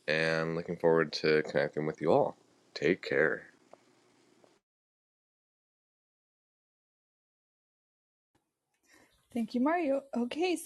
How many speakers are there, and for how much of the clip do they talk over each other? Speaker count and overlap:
two, no overlap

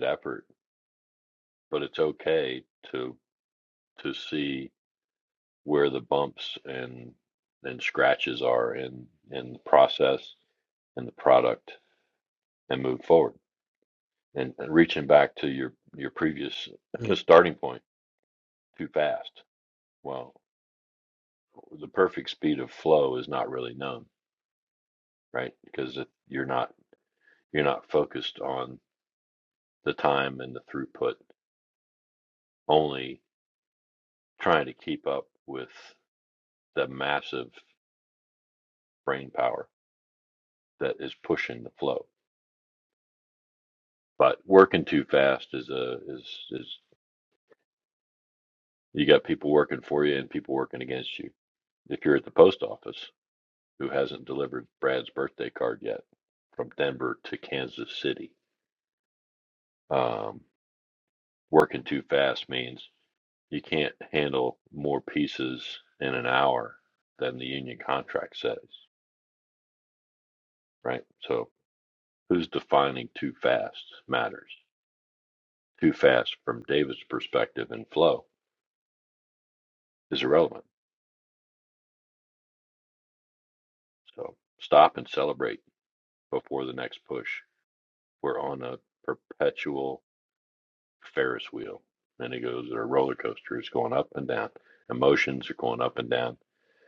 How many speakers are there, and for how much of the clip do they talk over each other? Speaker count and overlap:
one, no overlap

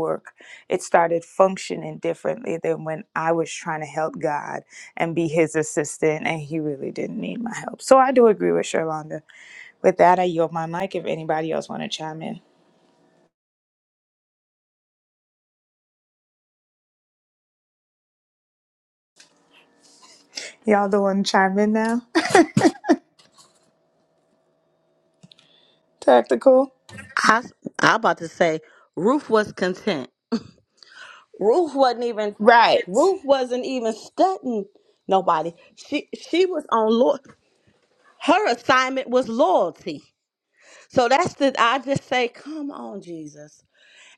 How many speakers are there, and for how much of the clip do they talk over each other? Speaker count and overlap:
two, no overlap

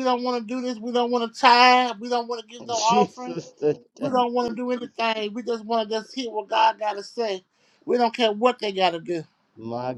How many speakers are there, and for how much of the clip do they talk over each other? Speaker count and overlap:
two, about 6%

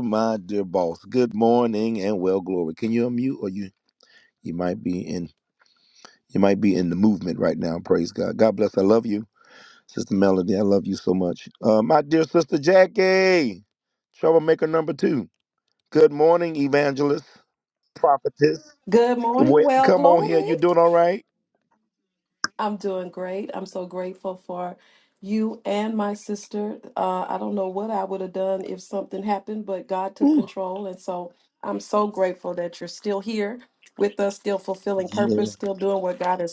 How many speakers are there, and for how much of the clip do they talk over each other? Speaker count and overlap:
two, about 5%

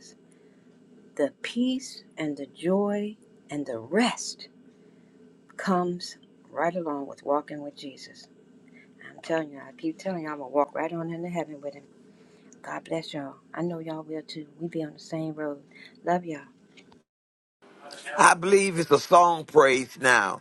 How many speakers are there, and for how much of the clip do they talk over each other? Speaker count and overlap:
two, no overlap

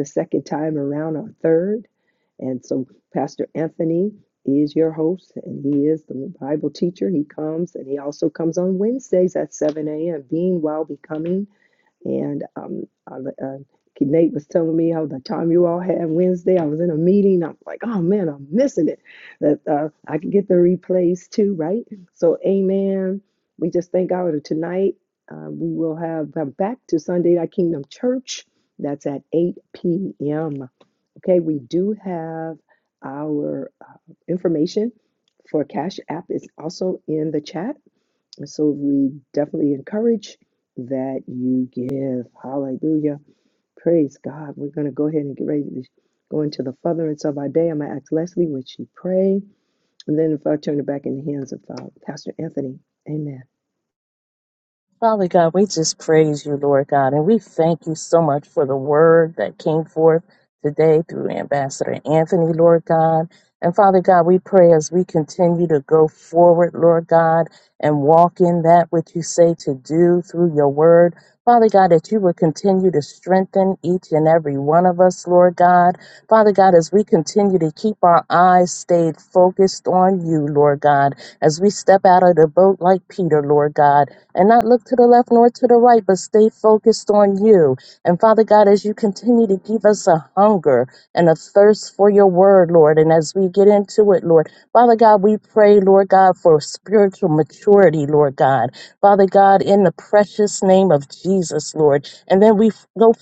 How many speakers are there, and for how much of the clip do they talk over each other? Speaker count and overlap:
two, no overlap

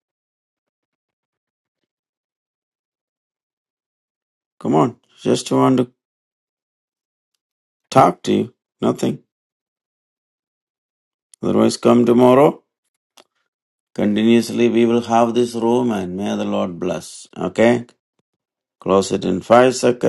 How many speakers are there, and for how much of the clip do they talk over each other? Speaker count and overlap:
one, no overlap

